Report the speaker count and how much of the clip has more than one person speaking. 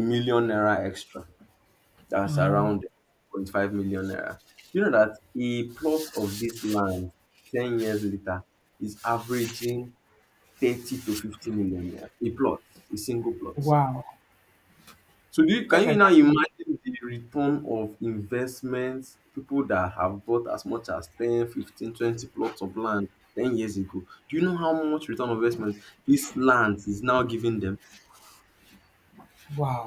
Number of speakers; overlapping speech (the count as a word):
two, about 4%